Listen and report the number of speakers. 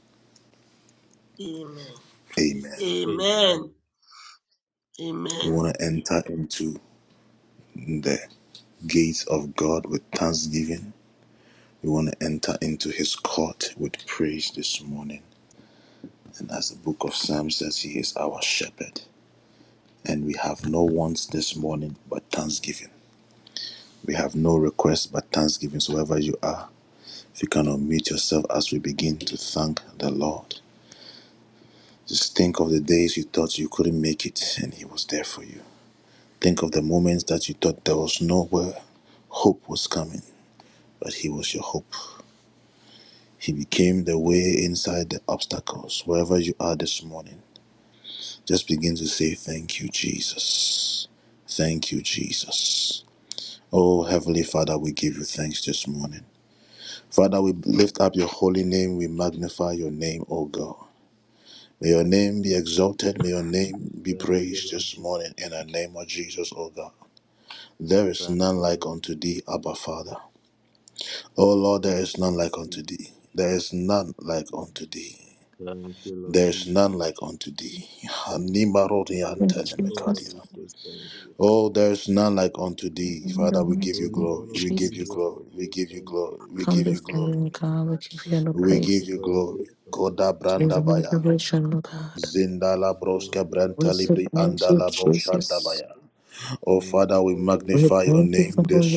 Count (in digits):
4